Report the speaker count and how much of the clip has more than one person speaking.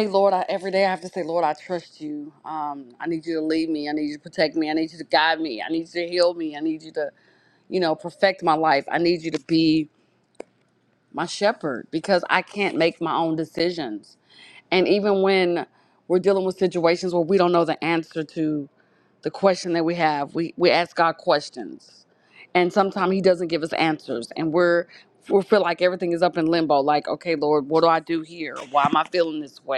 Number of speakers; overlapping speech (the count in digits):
1, no overlap